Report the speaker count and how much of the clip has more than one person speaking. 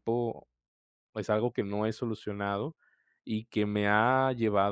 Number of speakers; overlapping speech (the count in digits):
1, no overlap